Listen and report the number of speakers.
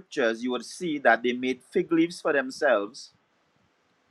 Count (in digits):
1